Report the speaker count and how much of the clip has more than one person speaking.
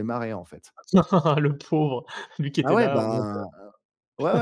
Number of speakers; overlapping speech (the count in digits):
2, about 19%